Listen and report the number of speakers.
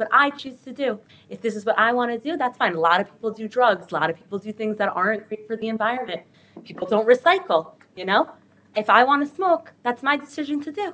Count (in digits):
1